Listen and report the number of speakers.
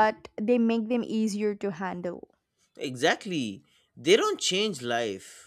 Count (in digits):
2